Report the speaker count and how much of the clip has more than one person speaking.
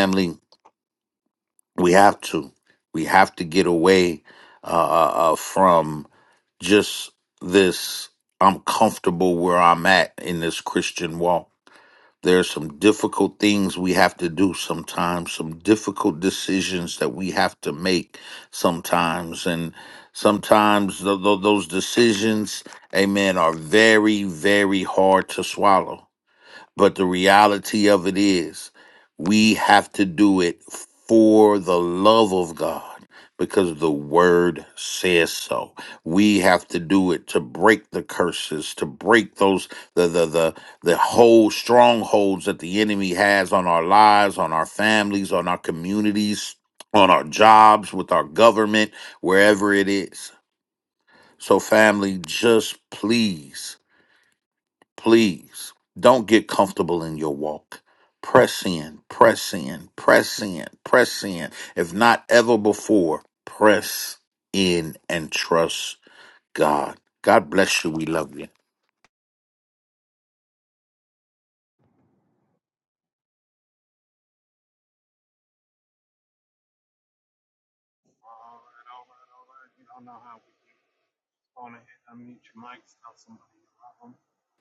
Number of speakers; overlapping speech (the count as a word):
two, no overlap